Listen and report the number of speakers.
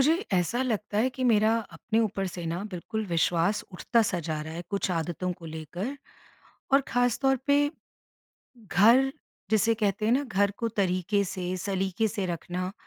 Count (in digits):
1